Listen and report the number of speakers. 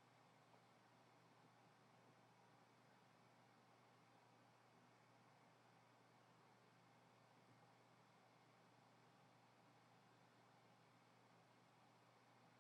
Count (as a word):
zero